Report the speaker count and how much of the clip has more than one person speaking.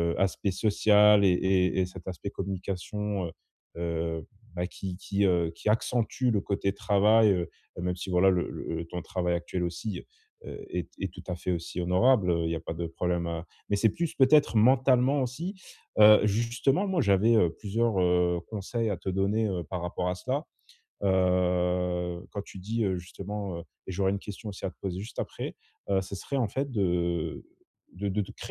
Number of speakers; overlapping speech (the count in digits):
1, no overlap